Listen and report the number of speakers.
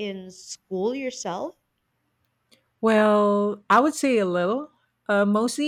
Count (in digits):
2